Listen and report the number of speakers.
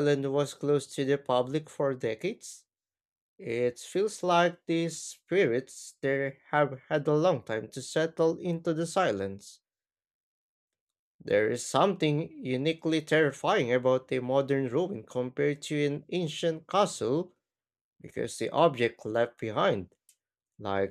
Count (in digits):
1